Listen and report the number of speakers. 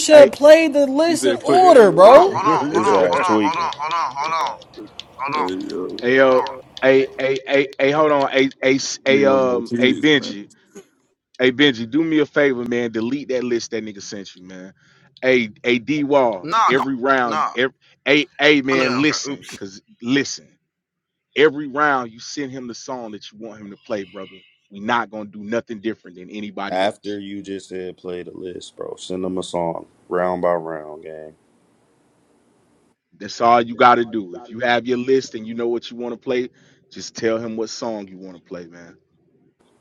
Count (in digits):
5